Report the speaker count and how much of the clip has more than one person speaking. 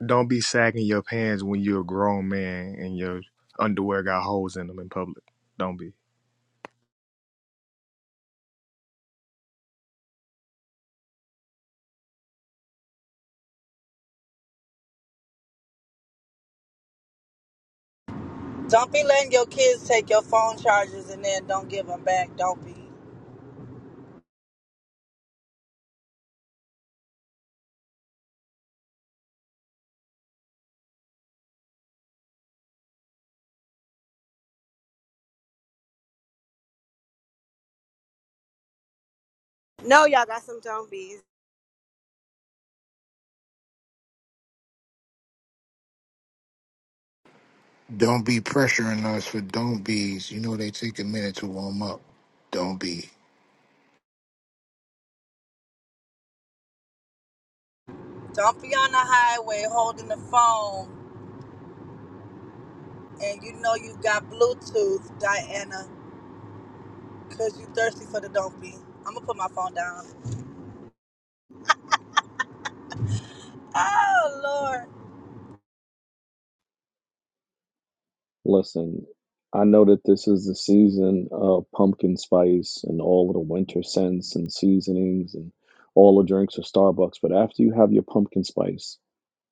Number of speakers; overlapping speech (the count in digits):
5, no overlap